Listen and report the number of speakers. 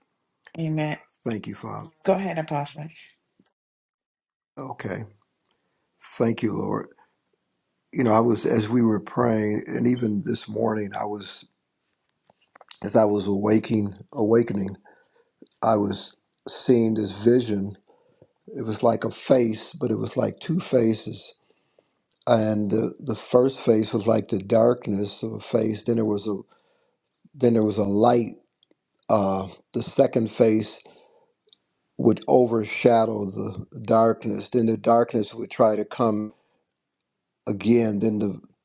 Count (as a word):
two